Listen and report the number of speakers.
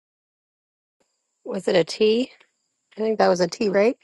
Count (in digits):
1